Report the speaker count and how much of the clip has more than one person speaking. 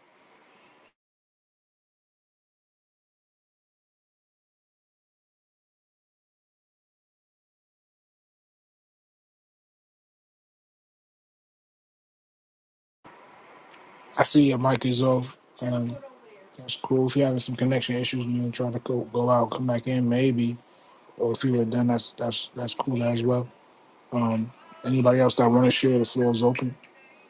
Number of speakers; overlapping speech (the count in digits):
1, no overlap